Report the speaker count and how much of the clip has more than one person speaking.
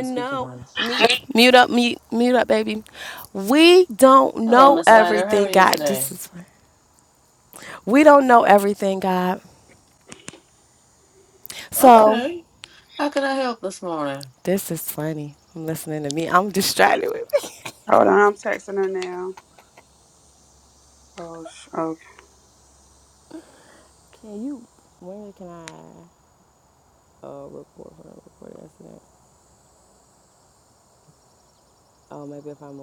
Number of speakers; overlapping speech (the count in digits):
3, about 8%